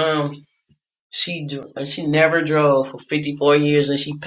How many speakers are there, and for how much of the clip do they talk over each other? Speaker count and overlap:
1, no overlap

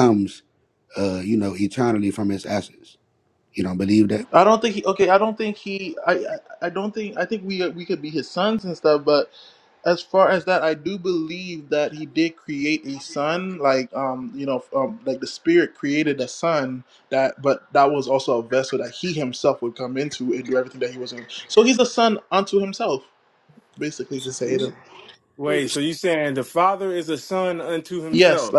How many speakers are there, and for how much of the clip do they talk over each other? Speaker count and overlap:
3, about 1%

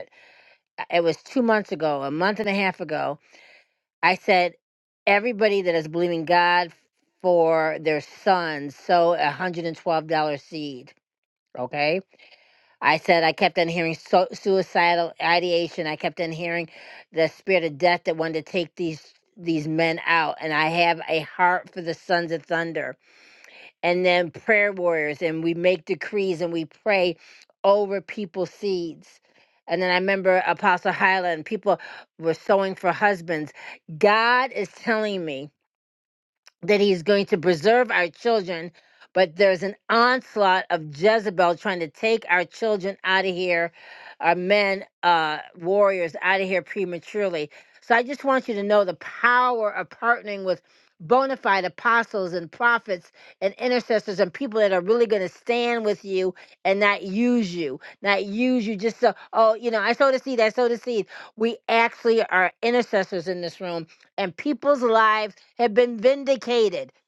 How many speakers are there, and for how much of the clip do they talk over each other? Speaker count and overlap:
1, no overlap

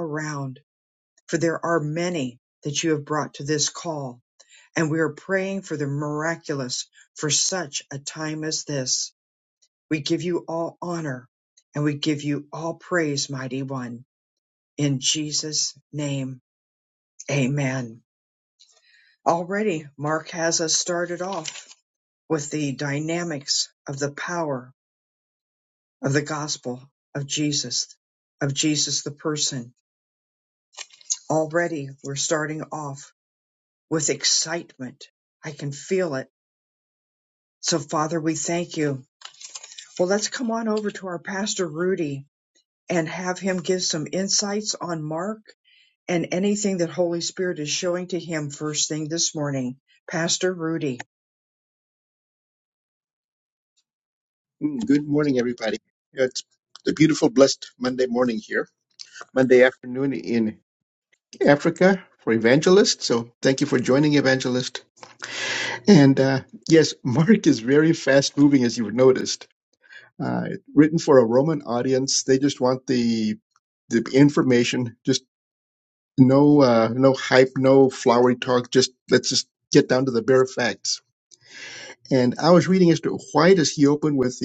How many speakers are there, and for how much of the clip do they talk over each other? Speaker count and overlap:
2, no overlap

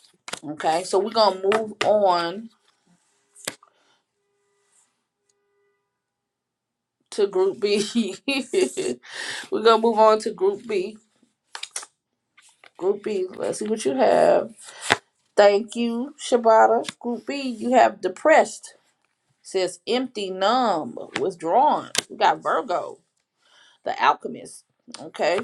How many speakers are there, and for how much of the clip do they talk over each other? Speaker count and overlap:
1, no overlap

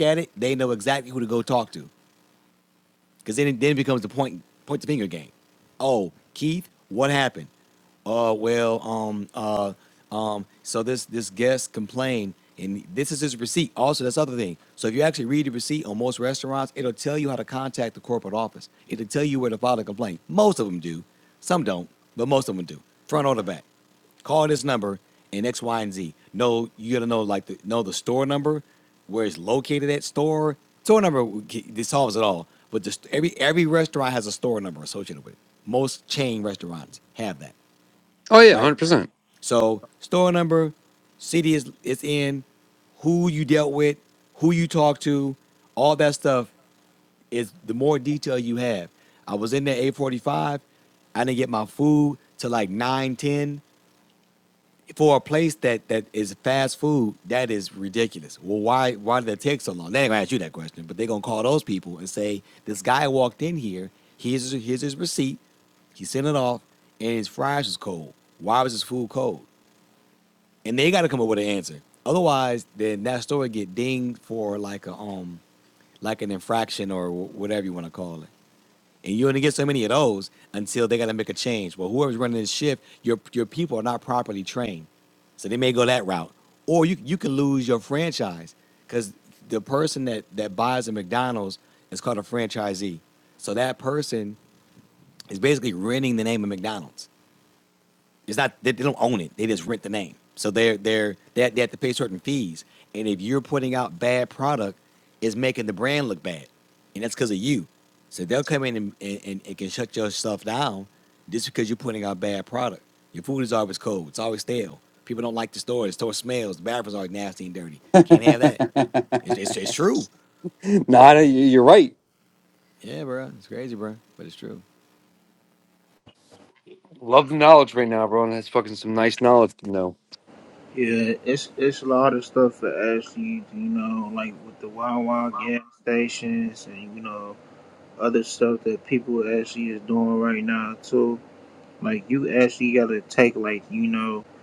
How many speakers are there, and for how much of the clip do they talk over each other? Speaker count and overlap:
3, under 1%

